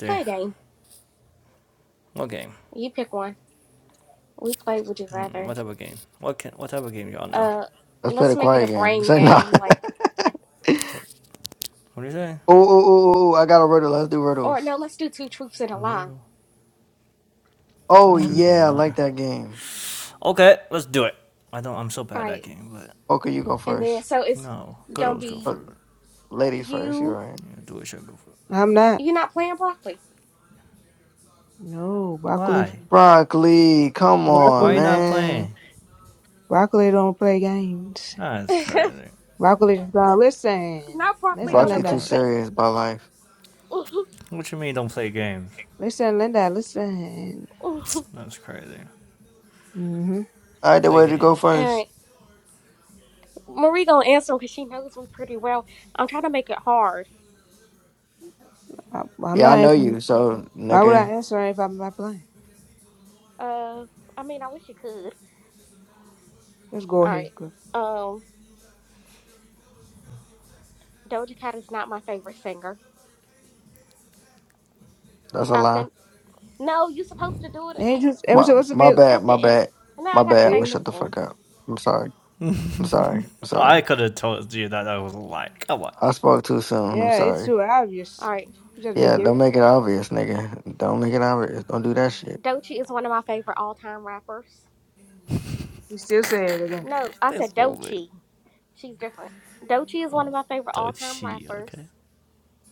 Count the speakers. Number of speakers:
four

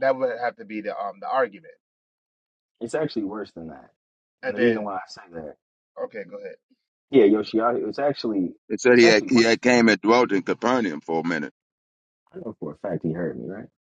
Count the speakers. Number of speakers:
three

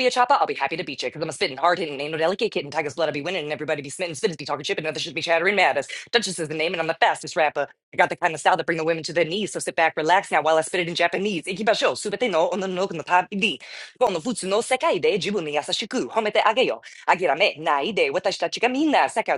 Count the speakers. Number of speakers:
one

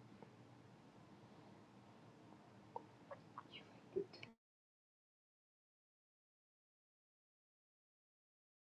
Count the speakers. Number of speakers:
zero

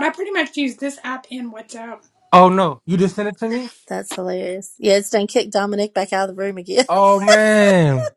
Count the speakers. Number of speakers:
three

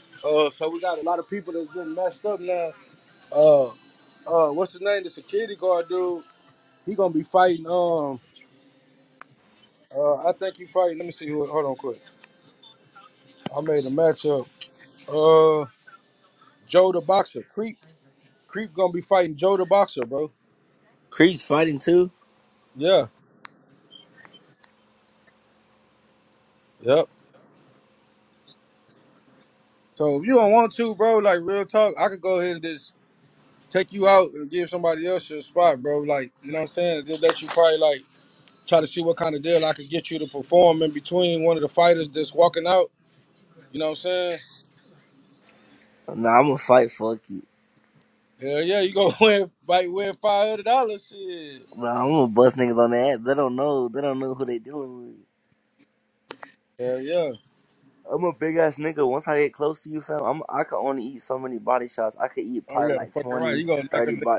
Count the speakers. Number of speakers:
two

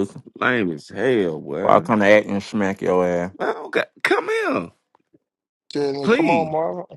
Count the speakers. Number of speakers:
three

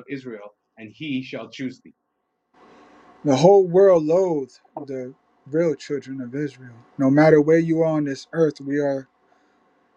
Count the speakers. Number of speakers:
two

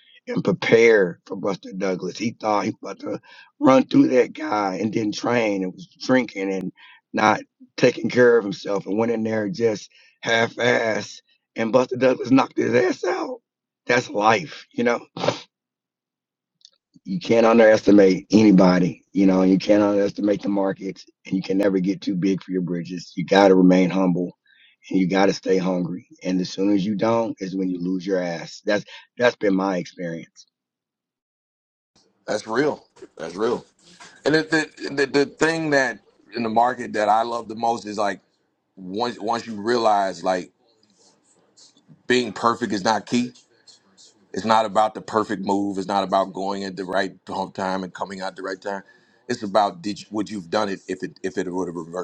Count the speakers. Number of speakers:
two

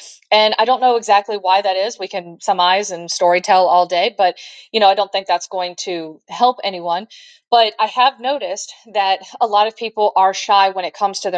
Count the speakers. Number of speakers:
one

